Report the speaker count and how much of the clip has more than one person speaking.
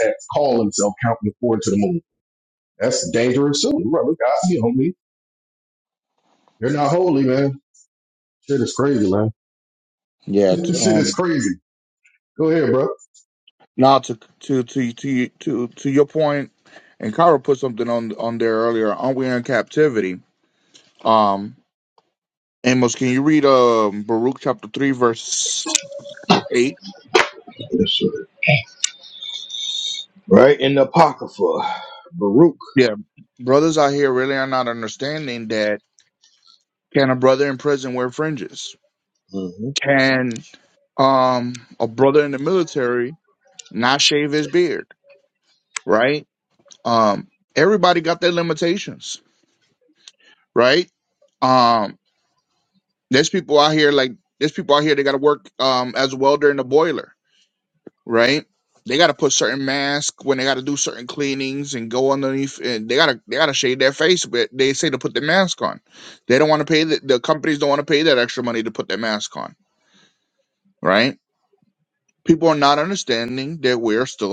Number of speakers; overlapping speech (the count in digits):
3, about 1%